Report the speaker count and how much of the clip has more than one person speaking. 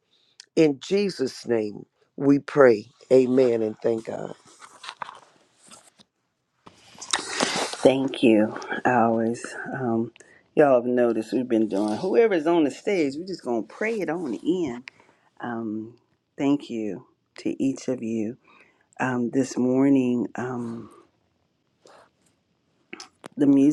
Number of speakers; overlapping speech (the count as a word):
two, no overlap